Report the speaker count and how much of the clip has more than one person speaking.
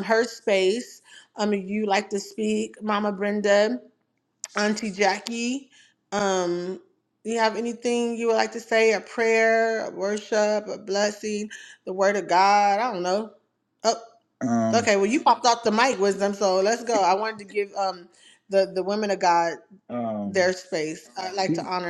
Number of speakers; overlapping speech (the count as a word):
two, about 2%